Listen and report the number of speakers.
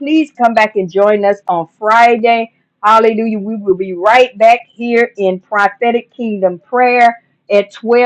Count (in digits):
1